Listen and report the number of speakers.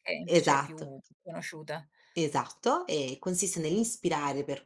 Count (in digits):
2